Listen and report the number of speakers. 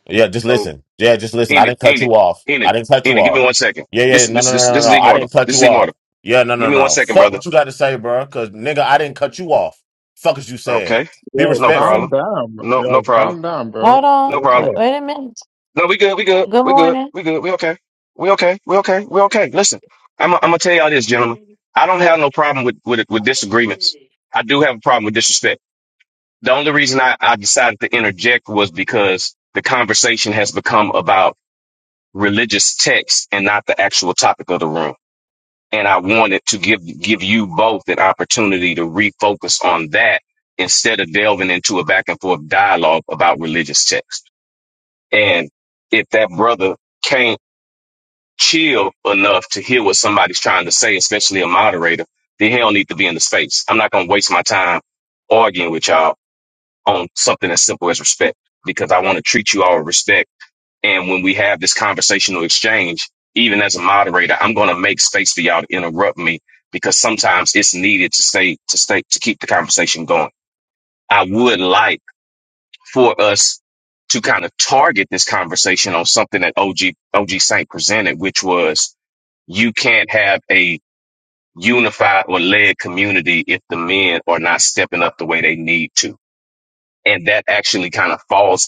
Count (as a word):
four